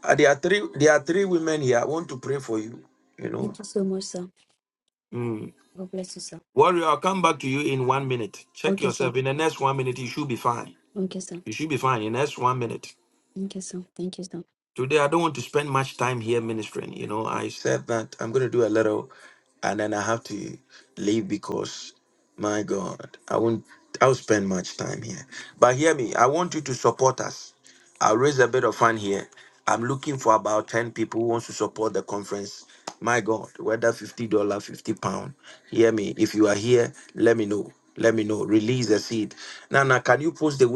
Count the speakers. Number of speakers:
2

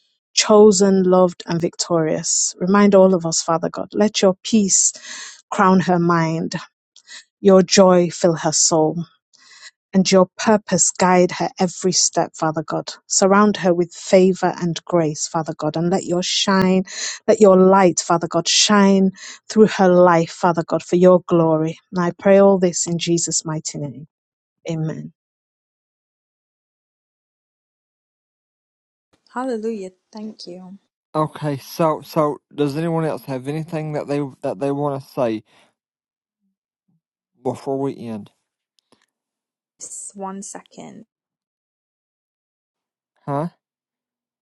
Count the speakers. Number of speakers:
3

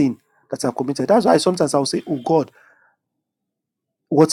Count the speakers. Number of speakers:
1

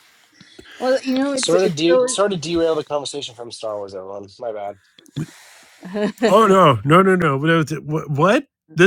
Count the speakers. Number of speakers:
3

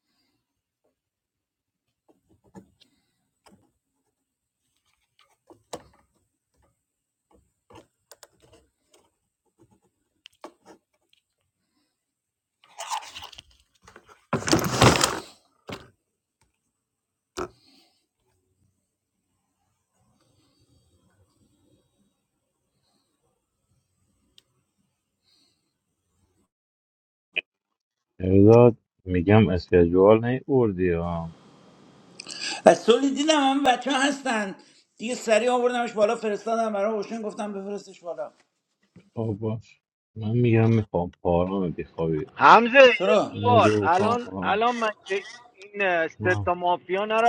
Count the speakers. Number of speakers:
3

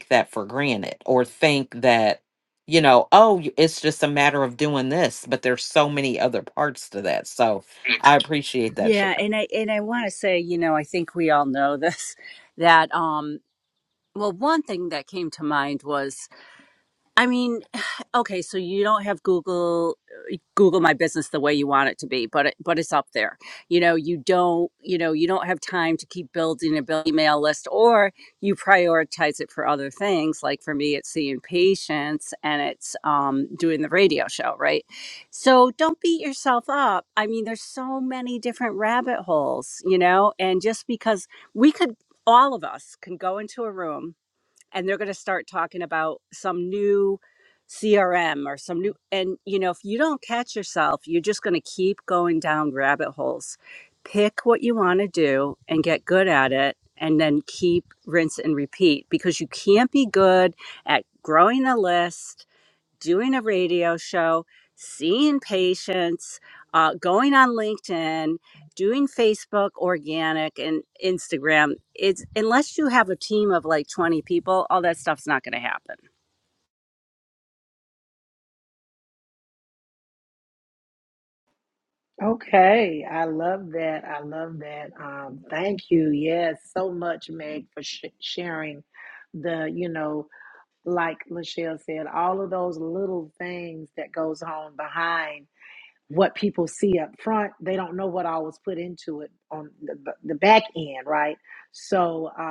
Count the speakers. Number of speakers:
3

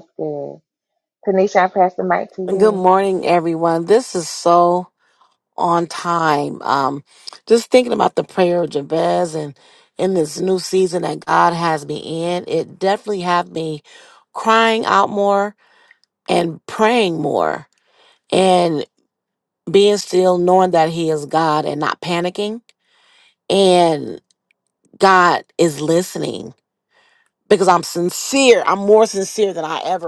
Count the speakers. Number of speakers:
2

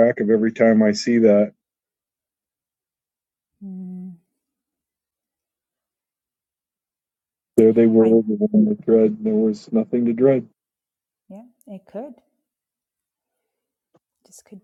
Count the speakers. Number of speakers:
2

